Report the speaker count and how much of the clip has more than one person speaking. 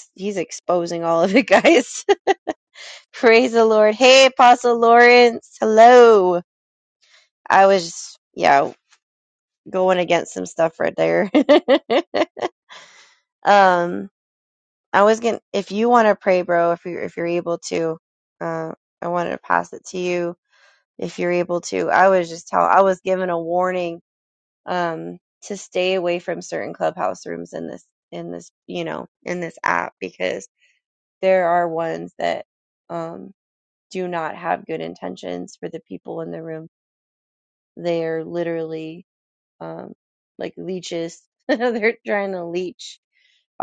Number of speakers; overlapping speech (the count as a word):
one, no overlap